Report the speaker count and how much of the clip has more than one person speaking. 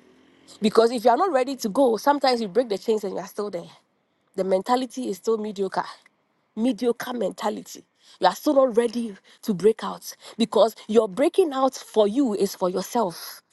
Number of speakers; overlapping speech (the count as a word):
one, no overlap